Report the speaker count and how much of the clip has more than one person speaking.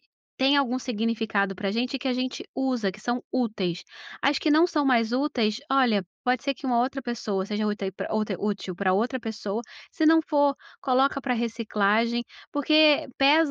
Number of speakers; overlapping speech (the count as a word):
one, no overlap